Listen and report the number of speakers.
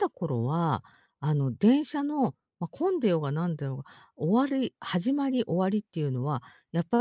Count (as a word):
one